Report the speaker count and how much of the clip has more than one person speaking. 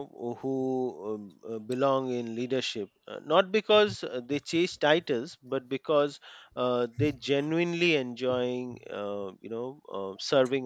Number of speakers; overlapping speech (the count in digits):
1, no overlap